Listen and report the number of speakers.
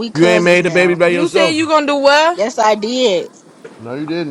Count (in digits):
3